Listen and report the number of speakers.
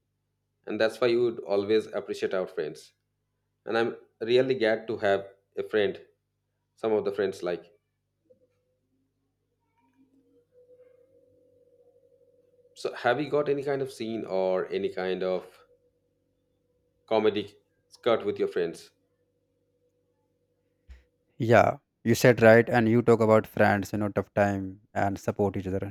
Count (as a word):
two